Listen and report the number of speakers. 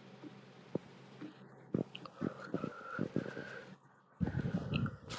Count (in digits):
0